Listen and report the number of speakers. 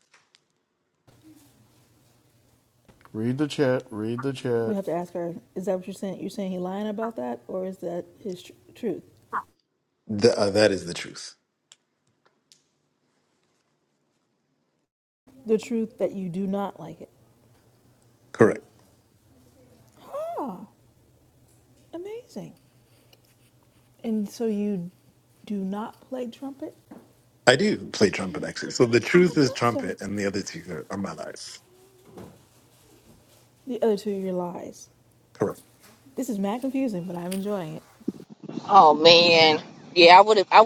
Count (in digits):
4